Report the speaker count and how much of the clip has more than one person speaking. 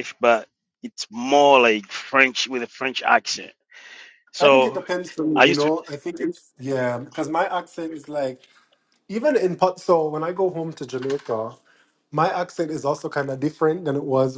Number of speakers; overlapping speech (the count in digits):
2, about 5%